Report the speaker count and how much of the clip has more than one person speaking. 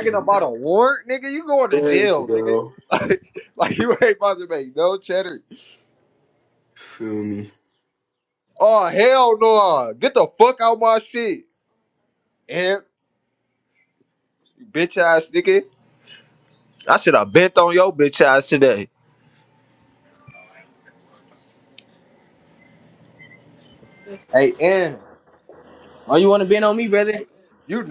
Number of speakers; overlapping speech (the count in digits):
3, about 5%